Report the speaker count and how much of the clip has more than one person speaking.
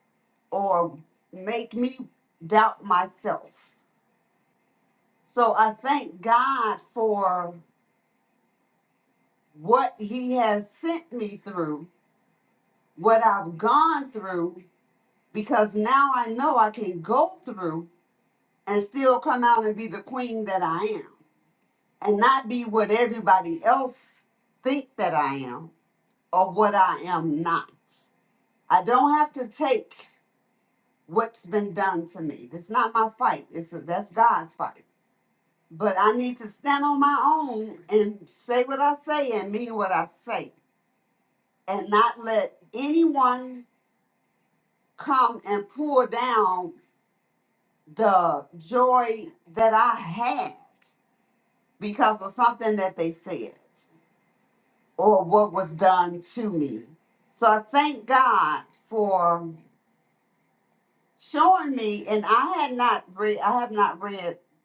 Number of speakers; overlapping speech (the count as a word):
one, no overlap